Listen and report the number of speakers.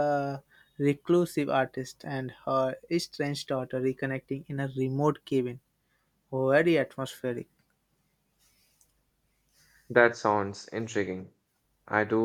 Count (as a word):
two